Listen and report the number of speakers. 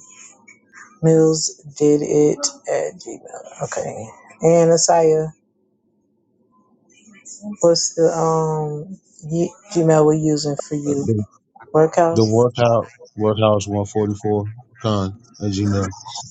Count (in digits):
2